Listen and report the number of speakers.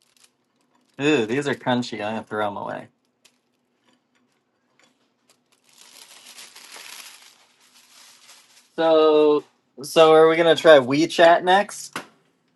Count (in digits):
1